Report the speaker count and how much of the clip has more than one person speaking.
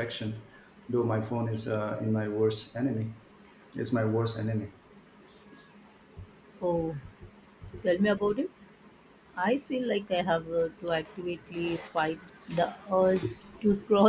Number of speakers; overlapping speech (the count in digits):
2, no overlap